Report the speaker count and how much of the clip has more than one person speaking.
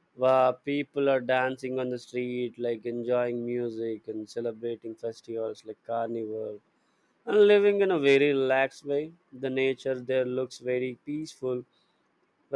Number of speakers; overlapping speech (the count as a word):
one, no overlap